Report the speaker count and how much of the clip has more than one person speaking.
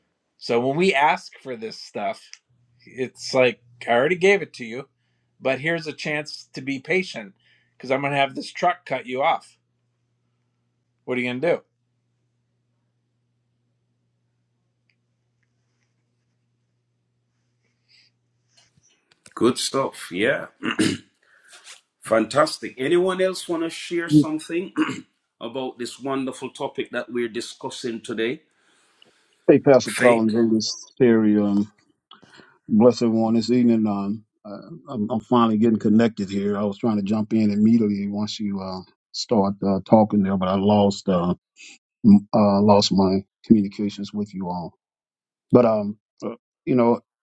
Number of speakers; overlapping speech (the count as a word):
three, about 1%